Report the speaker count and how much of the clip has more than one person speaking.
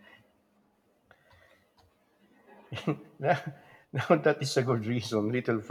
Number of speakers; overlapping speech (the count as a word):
one, no overlap